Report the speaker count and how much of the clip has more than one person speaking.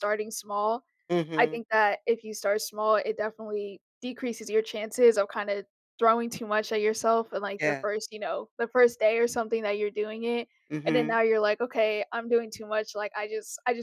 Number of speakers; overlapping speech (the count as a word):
two, about 6%